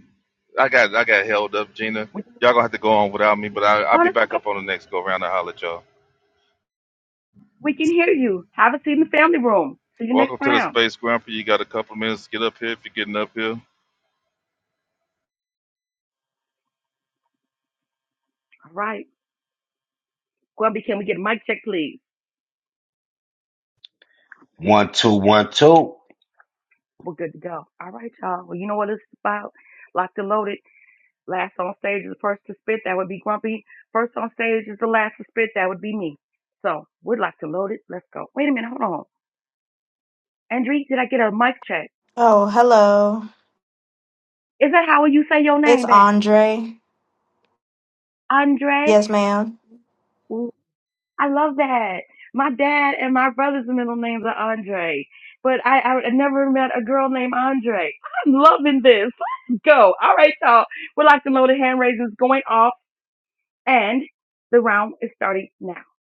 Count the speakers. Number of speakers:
four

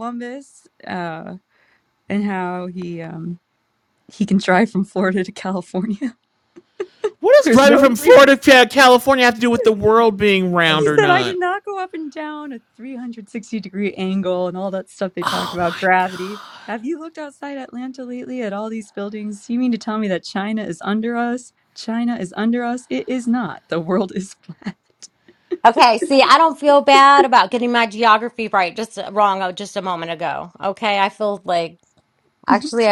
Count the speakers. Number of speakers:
three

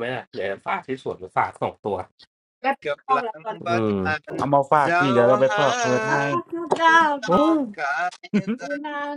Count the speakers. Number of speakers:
four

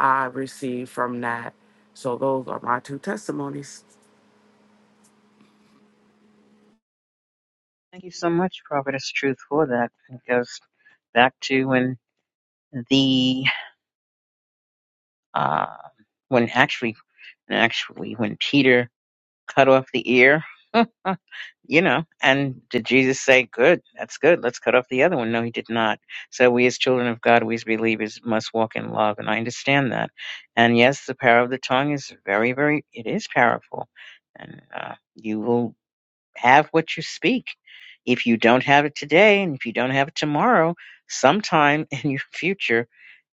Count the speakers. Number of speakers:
two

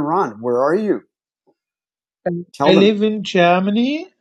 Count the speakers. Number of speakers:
two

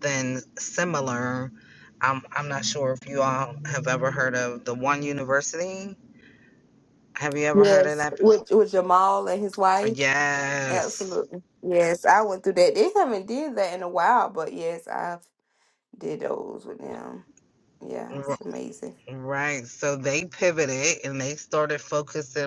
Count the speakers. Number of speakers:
two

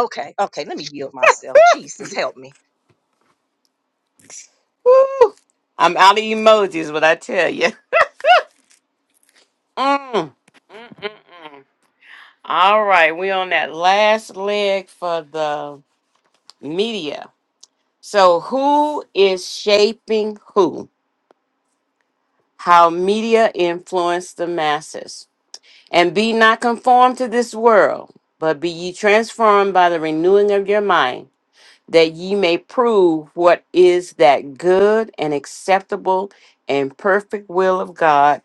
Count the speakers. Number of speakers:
two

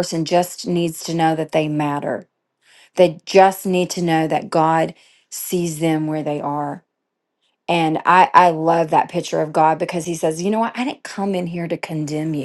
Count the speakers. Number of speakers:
one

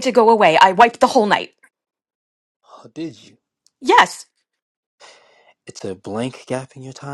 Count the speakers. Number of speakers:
two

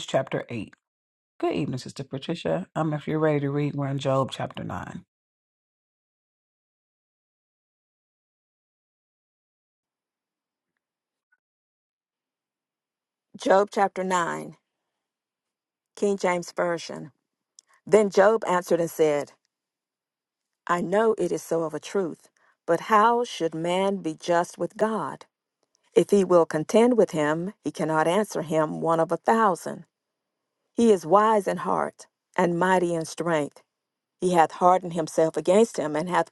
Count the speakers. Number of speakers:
two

